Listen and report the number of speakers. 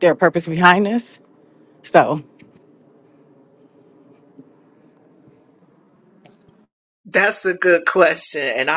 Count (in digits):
2